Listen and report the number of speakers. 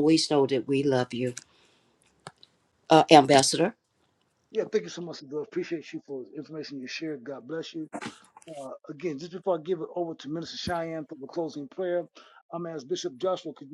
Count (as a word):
two